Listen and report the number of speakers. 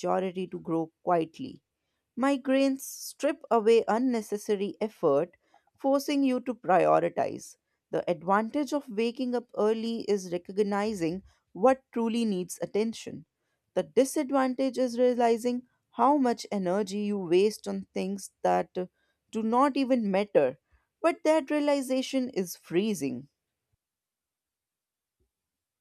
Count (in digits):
1